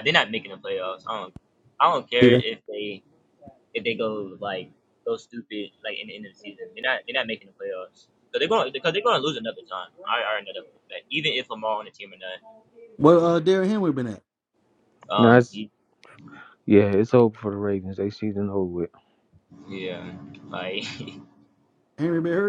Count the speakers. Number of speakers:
3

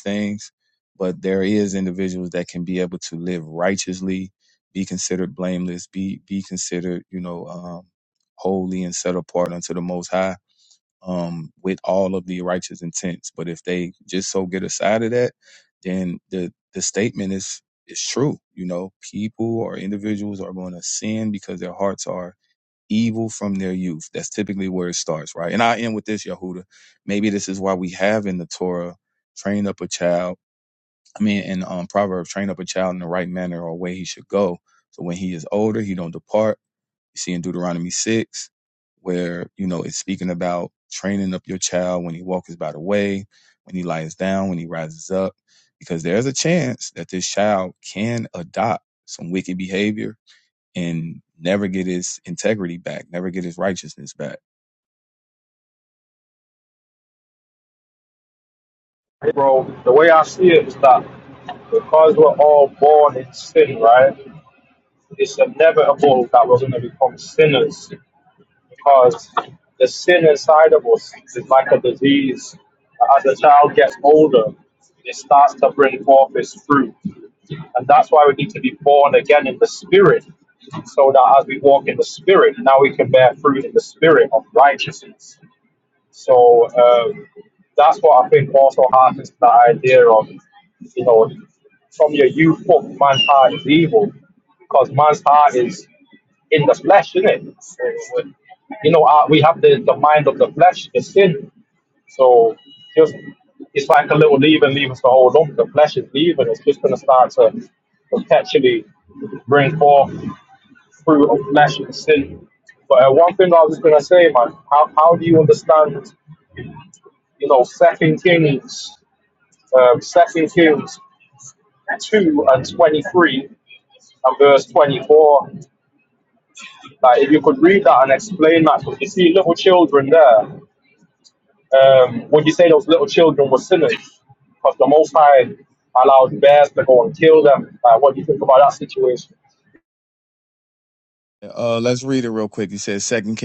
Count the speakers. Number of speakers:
2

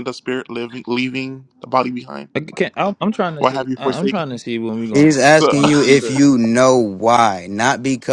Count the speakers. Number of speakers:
3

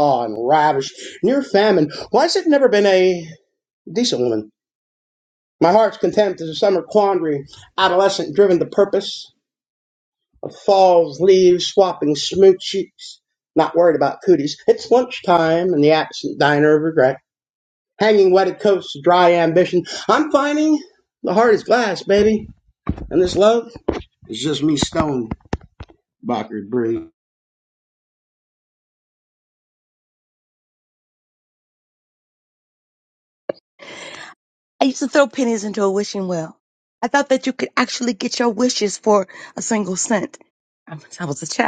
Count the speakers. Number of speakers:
2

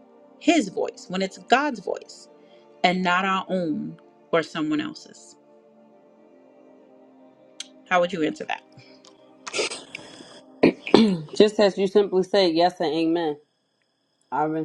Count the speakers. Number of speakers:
2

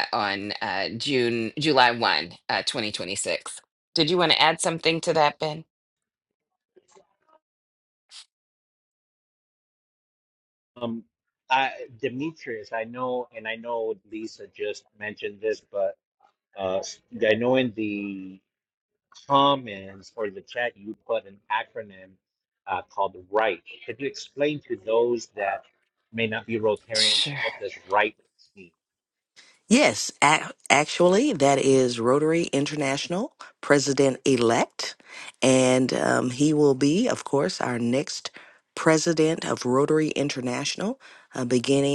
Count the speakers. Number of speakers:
3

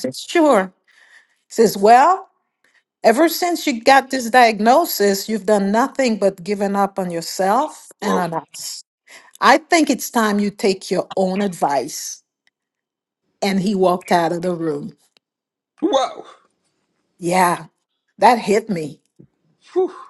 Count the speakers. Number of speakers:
2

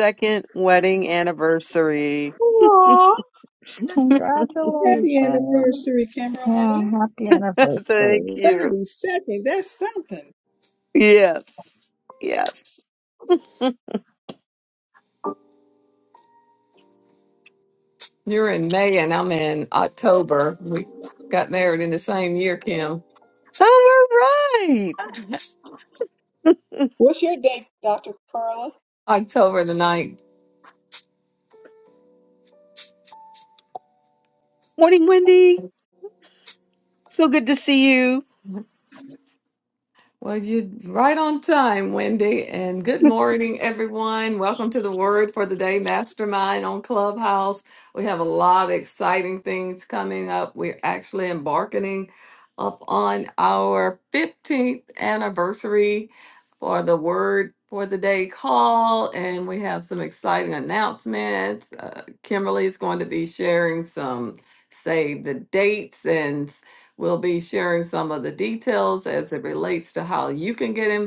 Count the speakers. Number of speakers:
4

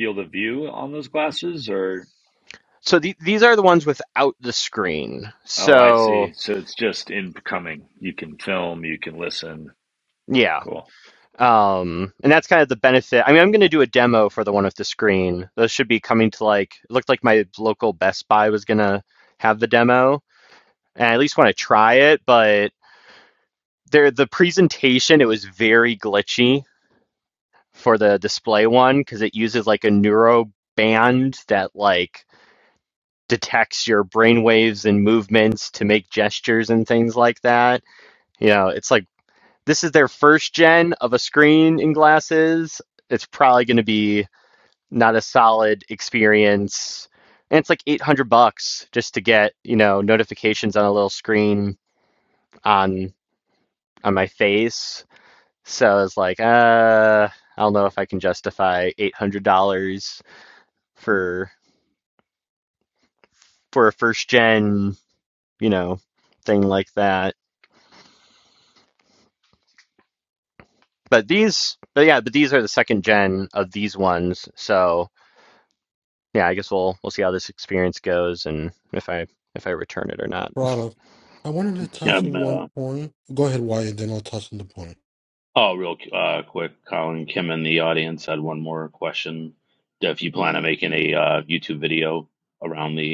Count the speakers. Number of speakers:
4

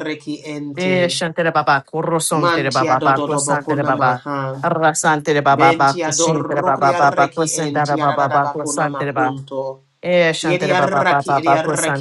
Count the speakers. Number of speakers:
2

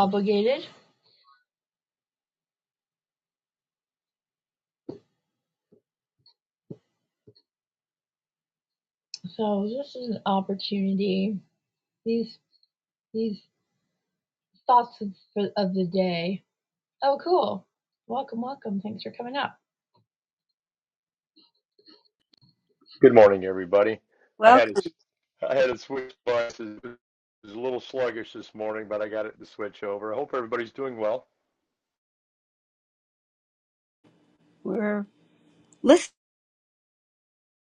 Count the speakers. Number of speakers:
3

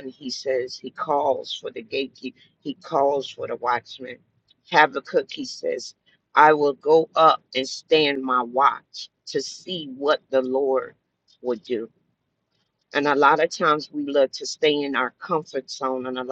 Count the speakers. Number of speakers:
1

